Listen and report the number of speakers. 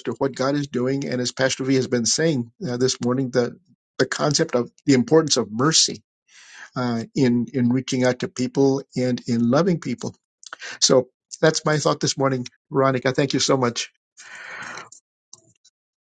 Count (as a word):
one